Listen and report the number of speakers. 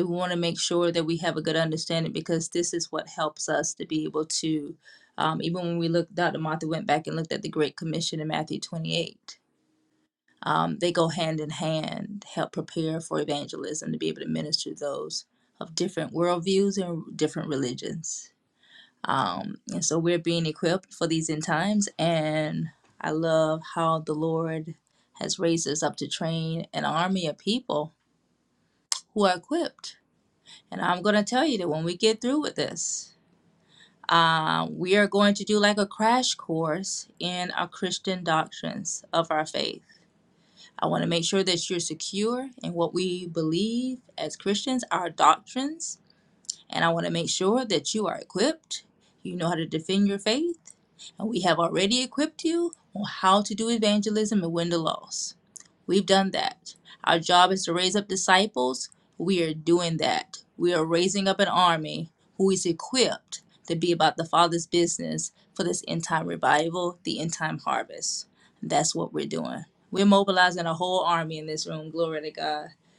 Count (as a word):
one